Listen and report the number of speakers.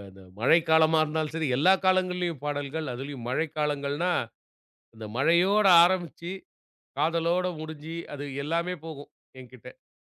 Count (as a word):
one